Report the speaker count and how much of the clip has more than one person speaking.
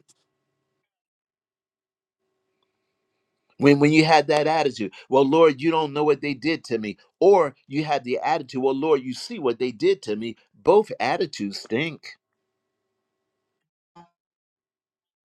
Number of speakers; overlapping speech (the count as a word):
one, no overlap